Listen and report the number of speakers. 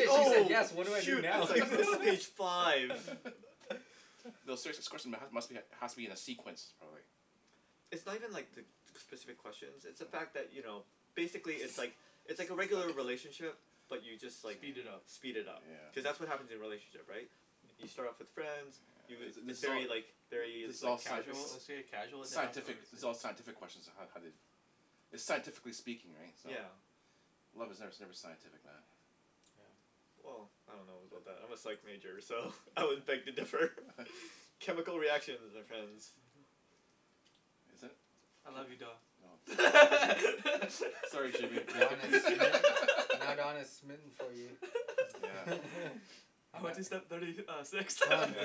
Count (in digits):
4